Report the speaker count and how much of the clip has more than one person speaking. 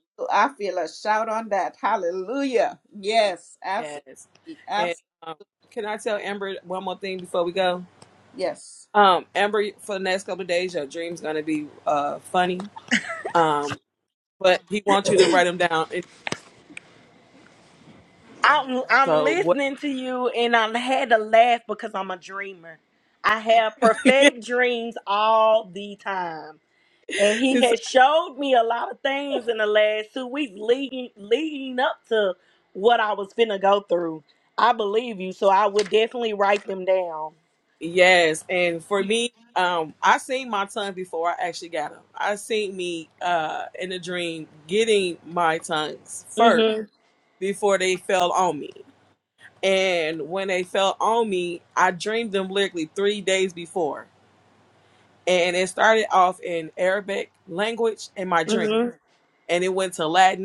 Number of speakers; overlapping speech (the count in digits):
3, about 3%